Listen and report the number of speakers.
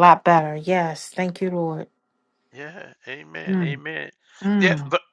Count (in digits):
2